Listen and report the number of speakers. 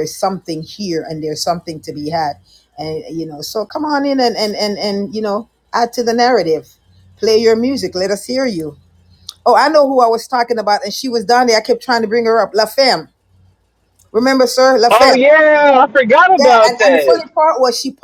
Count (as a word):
two